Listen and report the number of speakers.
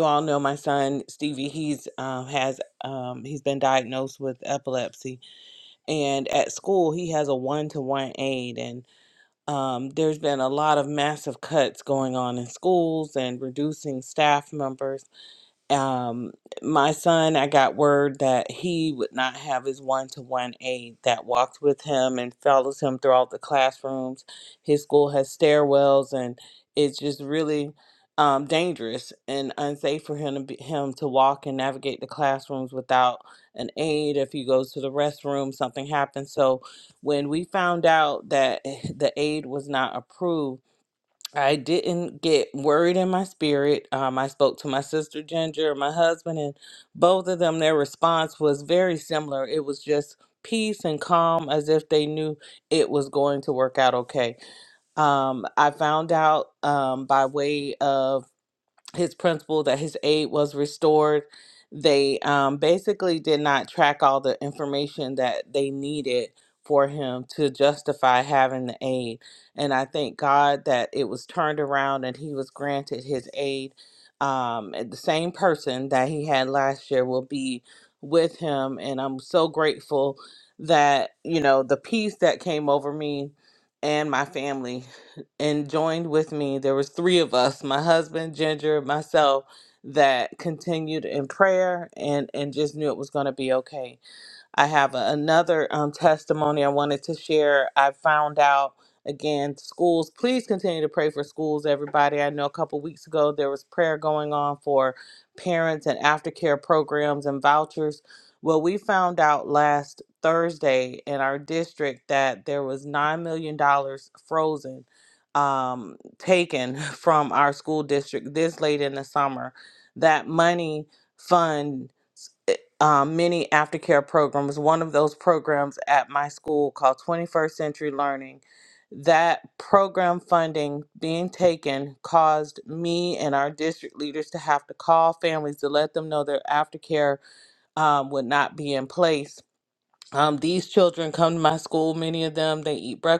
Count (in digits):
1